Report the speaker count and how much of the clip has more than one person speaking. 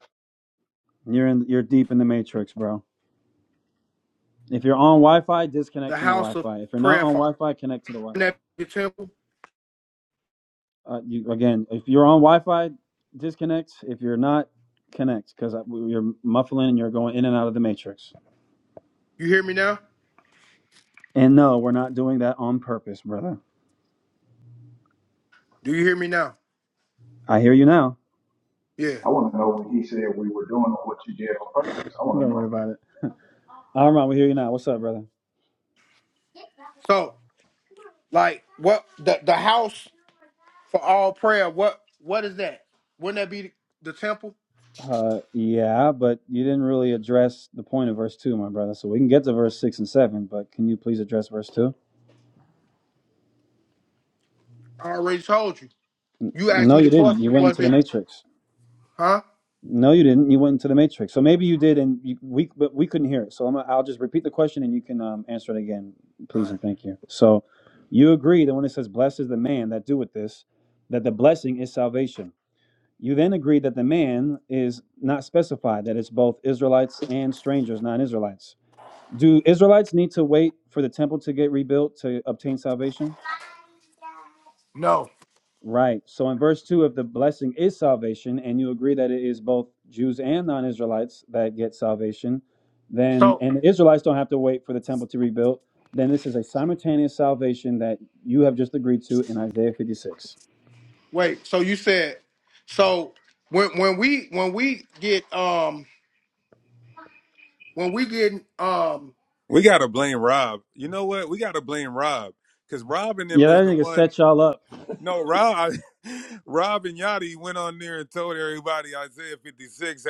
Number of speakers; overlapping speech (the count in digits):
4, about 3%